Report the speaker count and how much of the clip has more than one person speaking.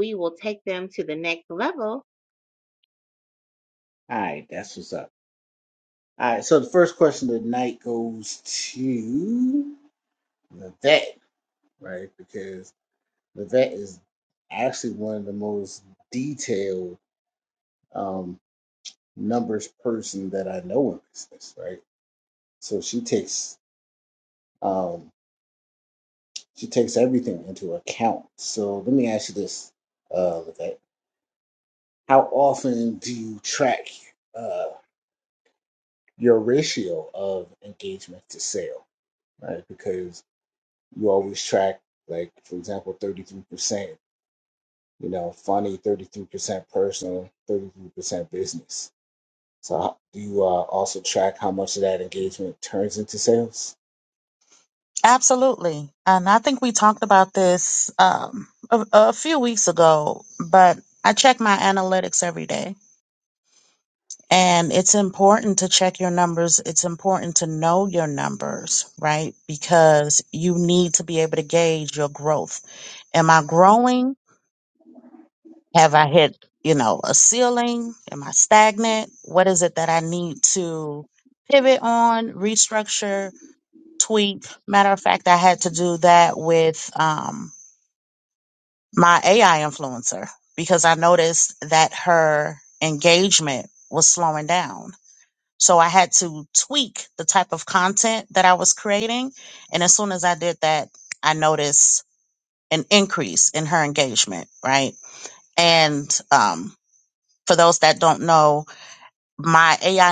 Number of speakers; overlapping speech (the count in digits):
3, no overlap